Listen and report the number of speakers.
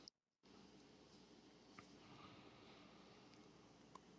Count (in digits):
0